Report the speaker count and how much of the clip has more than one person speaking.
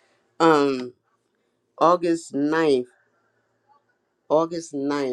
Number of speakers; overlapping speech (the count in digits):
1, no overlap